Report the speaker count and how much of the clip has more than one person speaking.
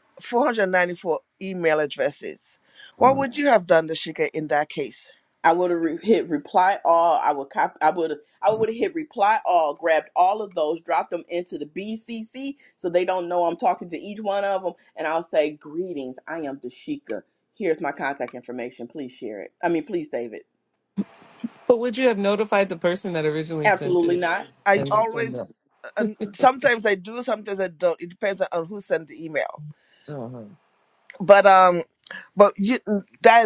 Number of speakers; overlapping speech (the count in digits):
3, about 3%